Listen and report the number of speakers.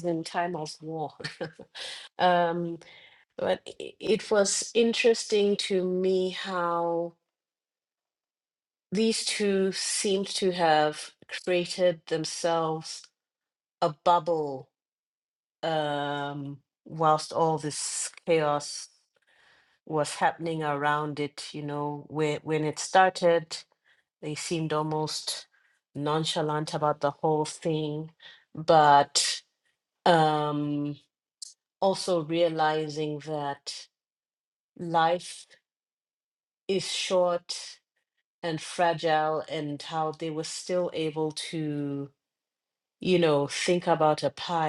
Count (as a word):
one